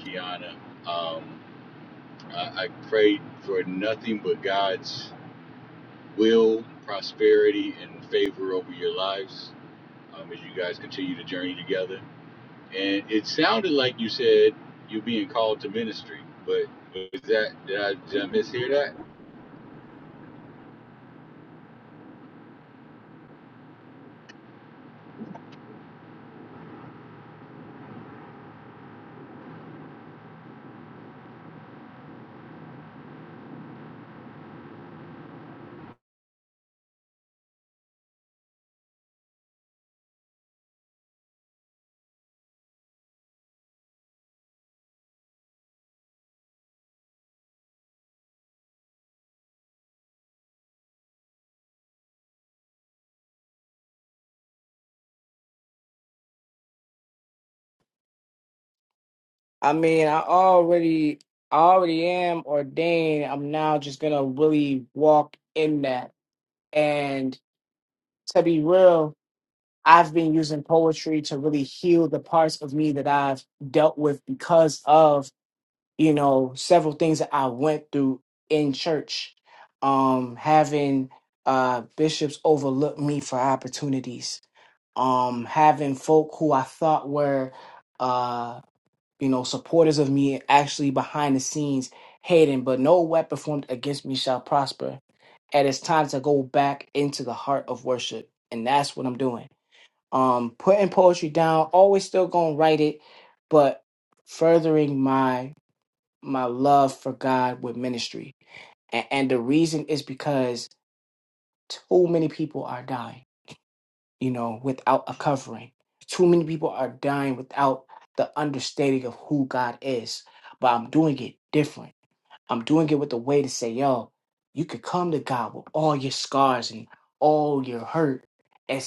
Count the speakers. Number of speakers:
2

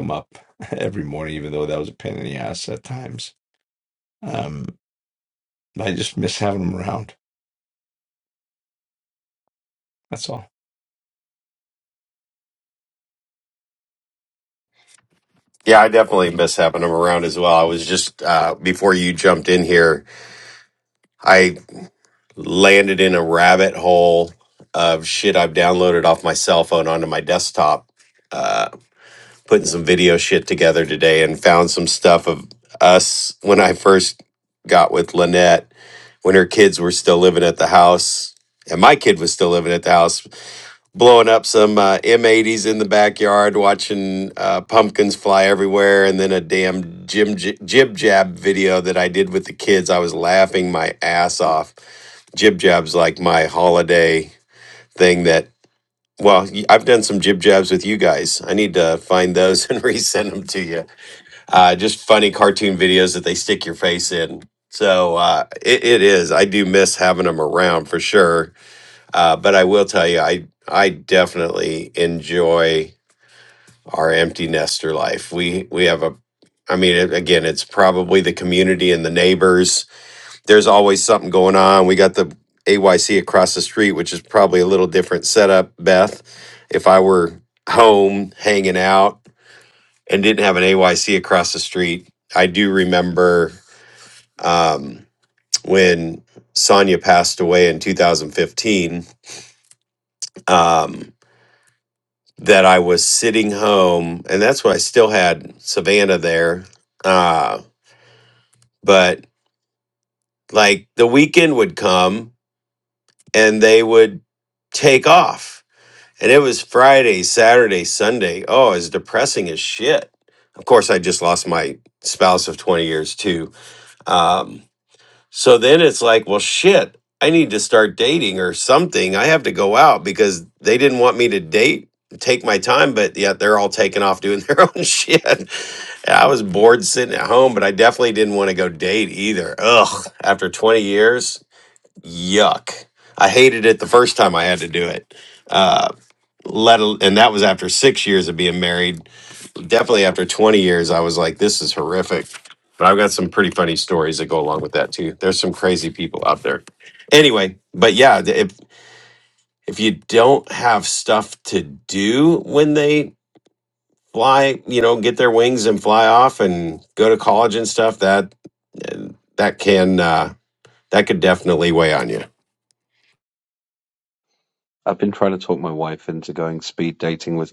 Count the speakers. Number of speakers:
3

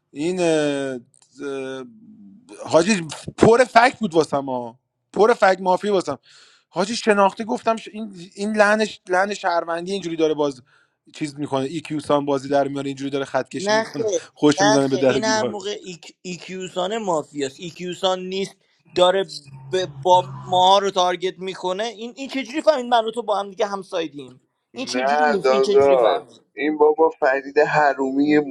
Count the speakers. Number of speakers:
3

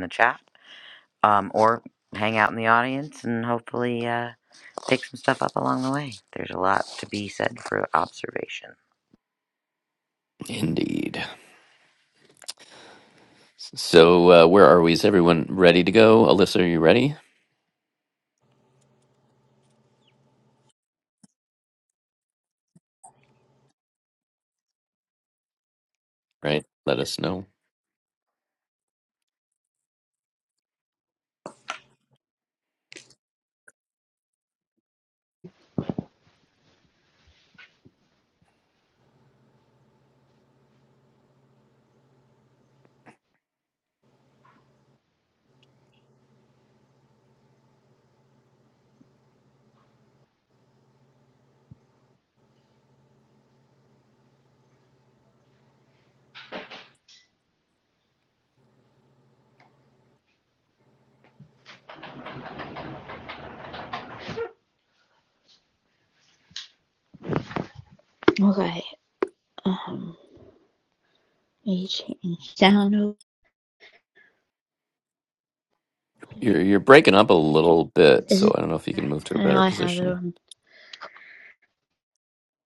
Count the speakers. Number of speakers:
3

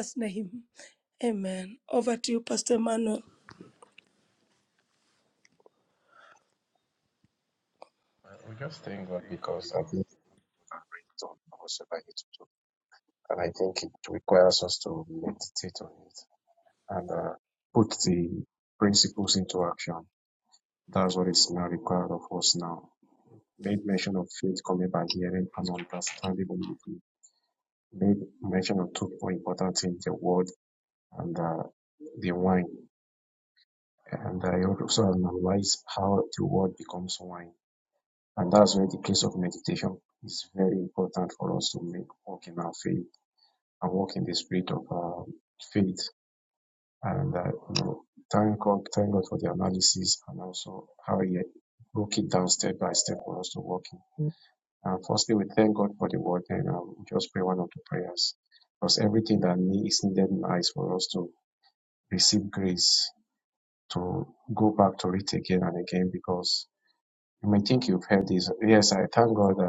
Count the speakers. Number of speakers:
2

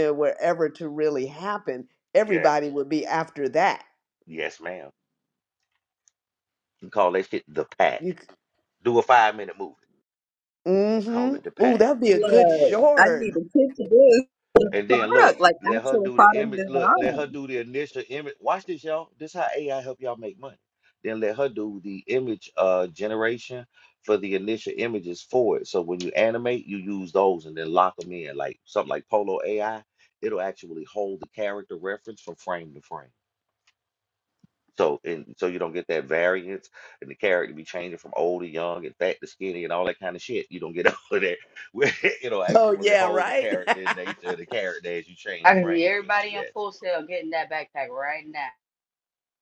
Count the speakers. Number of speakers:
4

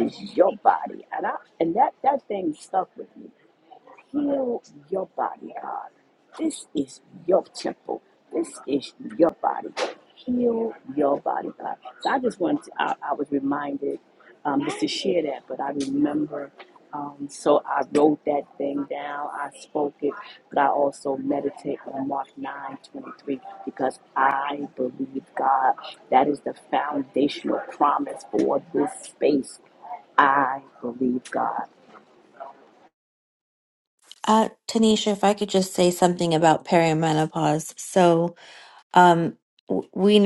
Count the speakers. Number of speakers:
2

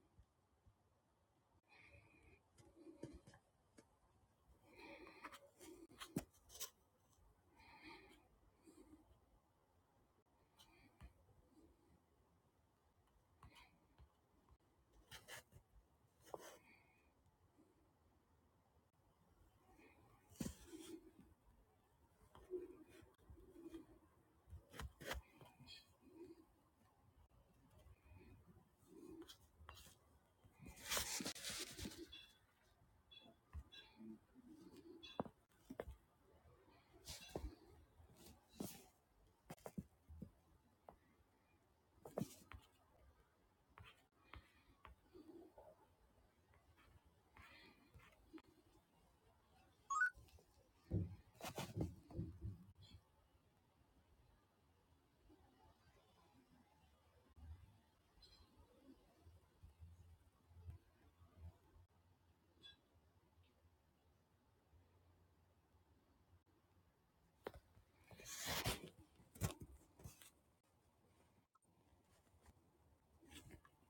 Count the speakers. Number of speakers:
0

